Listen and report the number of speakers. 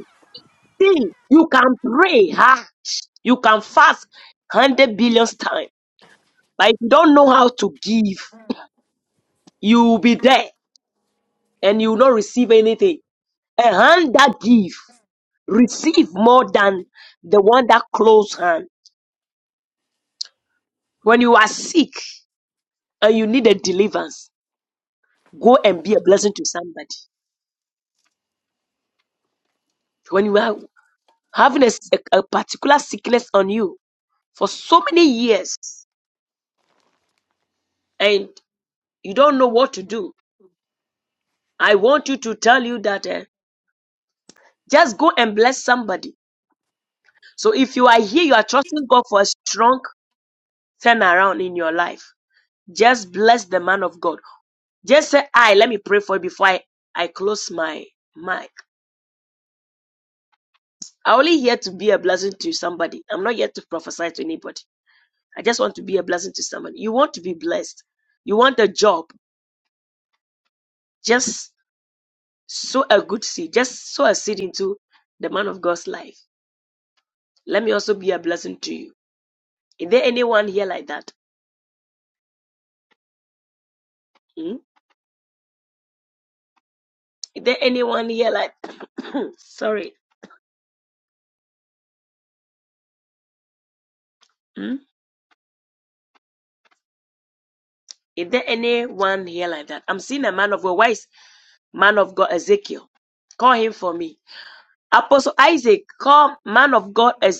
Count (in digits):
1